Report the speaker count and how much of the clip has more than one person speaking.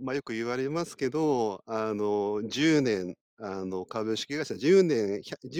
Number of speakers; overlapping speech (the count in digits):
1, no overlap